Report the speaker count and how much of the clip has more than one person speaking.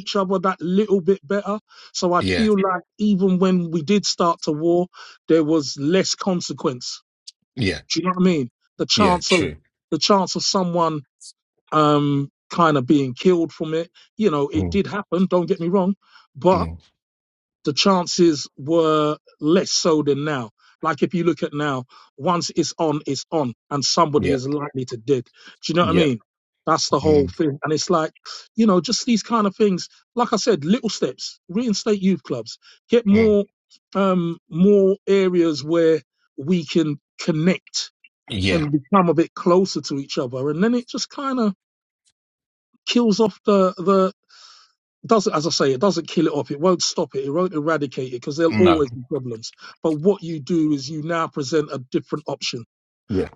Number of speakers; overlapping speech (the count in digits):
2, about 5%